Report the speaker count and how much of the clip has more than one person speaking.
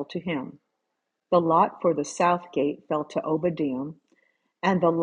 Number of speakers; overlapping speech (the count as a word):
one, no overlap